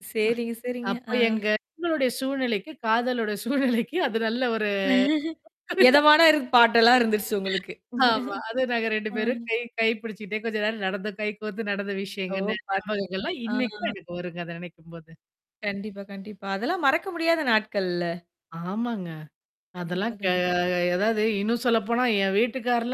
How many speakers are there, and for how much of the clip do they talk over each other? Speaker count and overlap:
2, about 9%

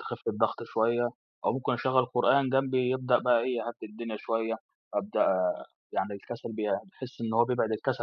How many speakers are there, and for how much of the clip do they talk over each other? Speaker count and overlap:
1, no overlap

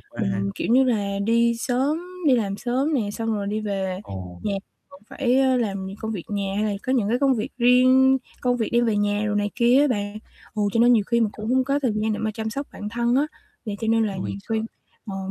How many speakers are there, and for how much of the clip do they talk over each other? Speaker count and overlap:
2, about 5%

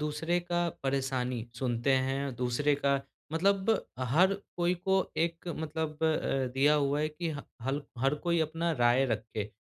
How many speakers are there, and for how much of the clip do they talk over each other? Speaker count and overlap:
1, no overlap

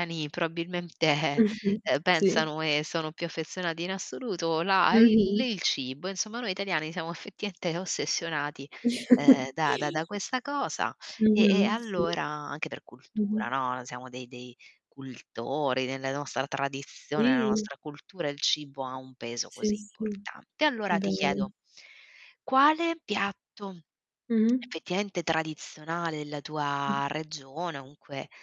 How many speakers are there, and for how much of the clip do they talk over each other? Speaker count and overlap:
2, about 13%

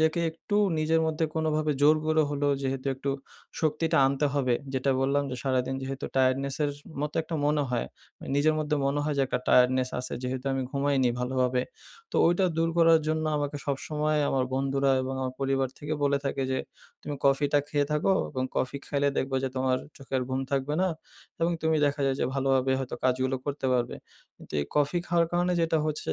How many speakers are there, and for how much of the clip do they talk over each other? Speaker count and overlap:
1, no overlap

